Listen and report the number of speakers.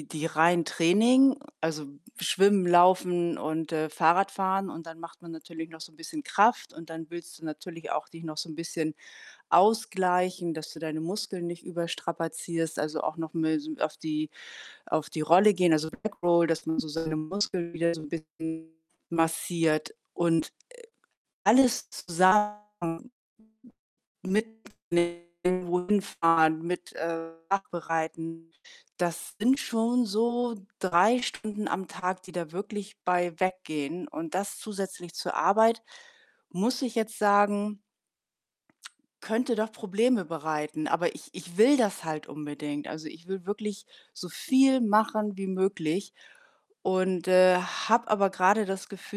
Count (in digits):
1